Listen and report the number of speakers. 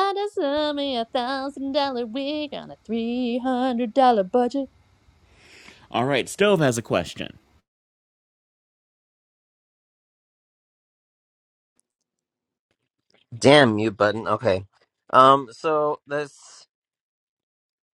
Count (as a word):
three